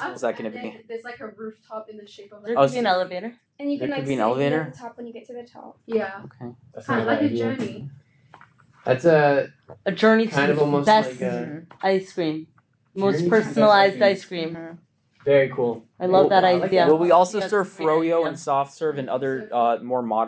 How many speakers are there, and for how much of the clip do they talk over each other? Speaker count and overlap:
five, about 43%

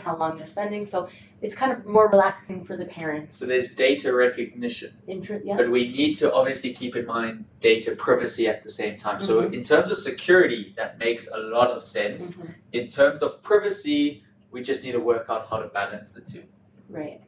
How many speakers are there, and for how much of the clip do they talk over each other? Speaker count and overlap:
two, about 3%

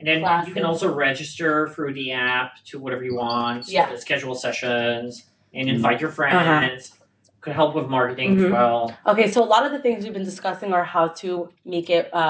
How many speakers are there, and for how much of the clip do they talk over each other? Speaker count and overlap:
two, about 13%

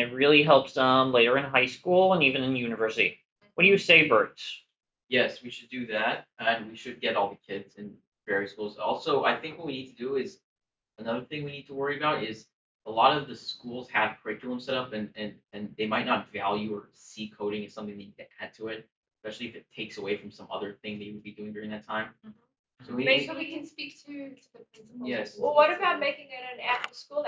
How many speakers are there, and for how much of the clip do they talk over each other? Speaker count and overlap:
four, about 9%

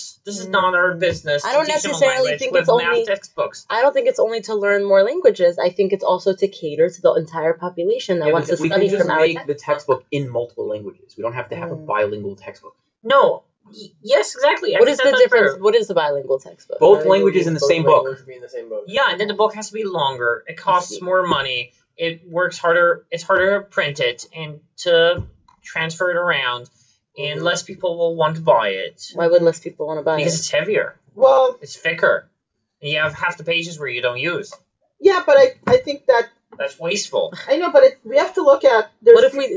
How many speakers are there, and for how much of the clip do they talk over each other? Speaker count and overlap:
five, about 23%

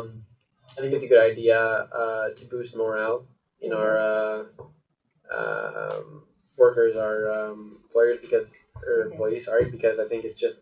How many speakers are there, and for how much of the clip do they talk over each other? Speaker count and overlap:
one, no overlap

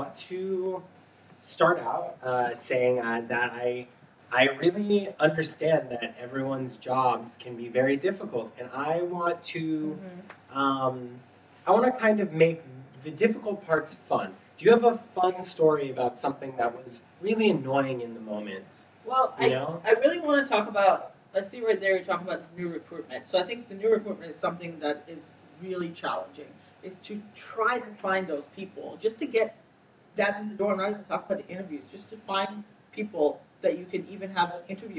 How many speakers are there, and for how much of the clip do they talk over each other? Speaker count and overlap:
two, about 1%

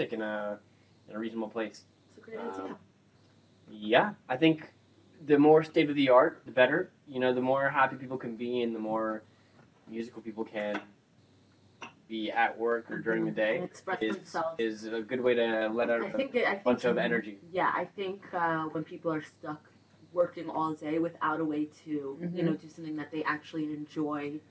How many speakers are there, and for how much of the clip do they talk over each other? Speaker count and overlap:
two, about 9%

